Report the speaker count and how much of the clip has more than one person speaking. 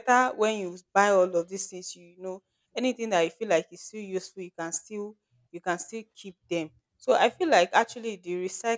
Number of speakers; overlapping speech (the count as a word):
one, no overlap